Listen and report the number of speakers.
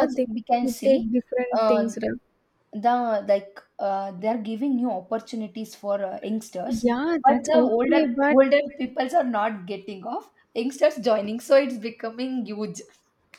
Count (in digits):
2